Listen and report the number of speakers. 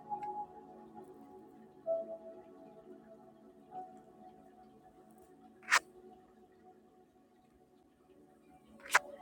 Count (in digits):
0